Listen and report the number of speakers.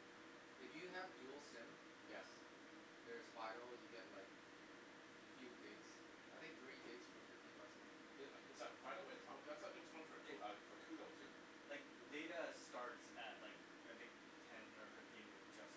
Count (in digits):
3